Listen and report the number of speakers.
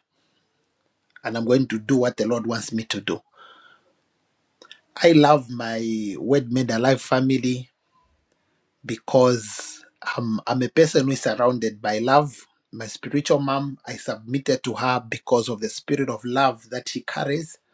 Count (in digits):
1